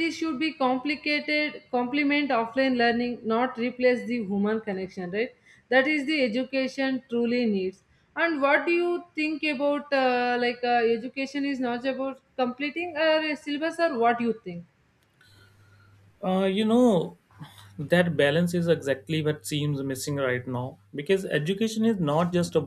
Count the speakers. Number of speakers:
2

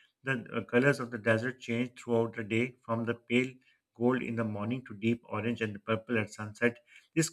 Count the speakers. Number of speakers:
1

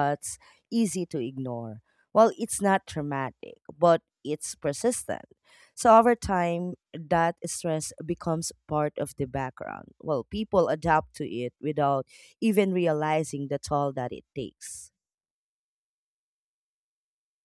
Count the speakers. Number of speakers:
1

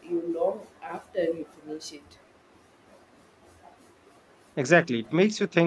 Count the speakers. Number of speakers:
2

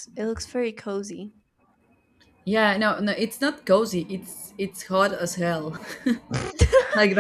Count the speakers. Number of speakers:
2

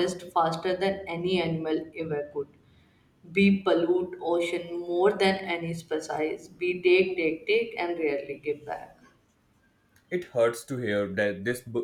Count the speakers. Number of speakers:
2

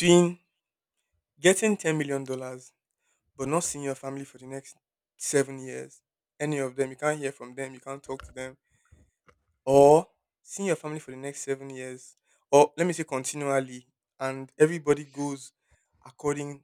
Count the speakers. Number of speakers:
1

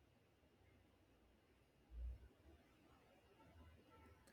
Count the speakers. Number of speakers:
0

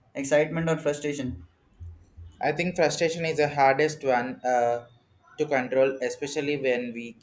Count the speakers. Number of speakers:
2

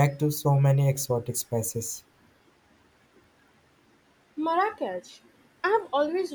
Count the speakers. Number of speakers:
2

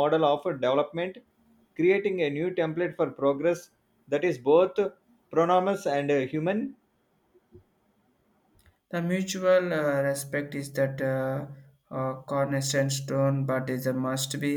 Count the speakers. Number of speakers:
2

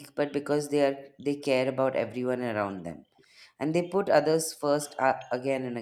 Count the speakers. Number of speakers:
1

